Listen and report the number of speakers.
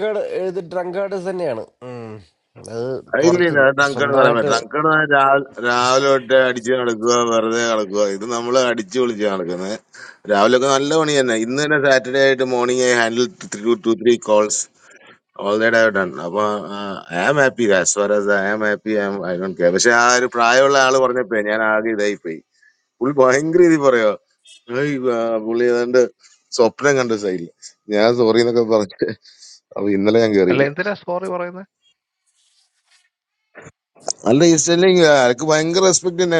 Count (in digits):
3